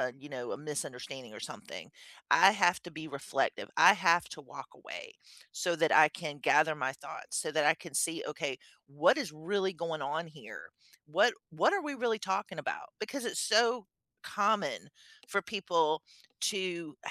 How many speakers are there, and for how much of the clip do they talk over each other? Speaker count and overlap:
1, no overlap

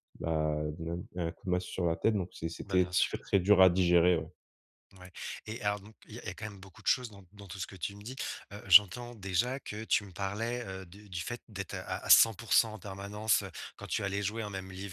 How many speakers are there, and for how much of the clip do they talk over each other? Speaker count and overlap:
2, about 4%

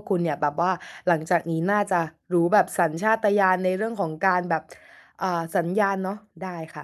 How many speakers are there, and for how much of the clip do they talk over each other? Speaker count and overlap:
1, no overlap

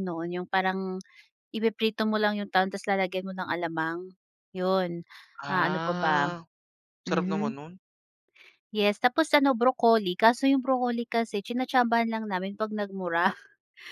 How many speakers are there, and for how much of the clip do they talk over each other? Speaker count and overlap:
2, about 9%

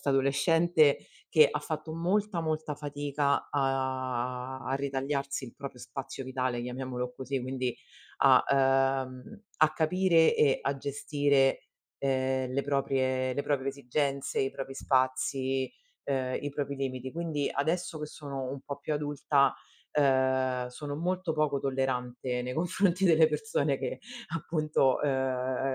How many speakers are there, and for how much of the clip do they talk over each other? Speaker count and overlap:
1, no overlap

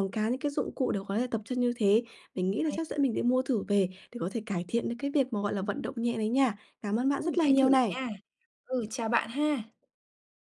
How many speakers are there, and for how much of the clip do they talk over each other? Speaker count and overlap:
2, about 8%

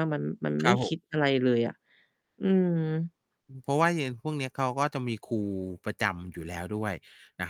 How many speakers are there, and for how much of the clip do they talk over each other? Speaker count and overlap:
2, about 4%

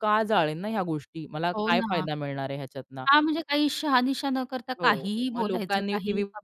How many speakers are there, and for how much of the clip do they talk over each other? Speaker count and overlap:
2, about 31%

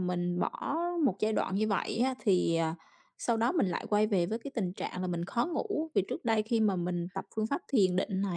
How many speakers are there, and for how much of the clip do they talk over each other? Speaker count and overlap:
1, no overlap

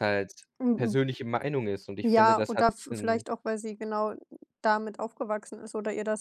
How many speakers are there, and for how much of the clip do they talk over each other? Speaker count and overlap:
2, about 22%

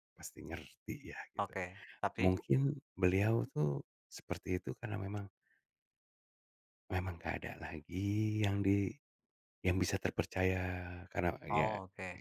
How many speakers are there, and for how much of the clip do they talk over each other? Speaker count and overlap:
2, about 5%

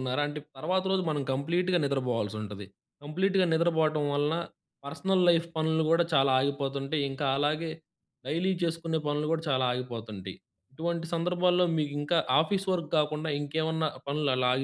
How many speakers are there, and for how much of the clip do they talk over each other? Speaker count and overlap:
1, no overlap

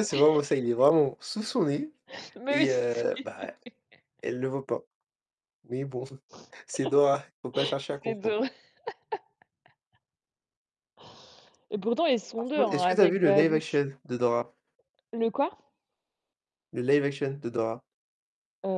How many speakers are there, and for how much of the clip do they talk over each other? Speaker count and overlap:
2, about 14%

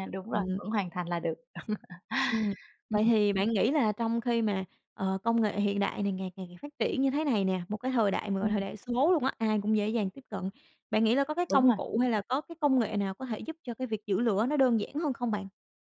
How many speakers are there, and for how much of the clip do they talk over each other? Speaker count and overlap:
2, about 5%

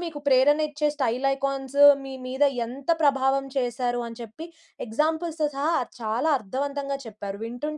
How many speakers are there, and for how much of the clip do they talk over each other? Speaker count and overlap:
1, no overlap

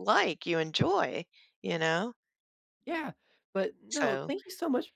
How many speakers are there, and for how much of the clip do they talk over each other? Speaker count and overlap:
2, about 8%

